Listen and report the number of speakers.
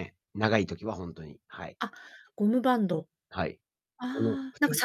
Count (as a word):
two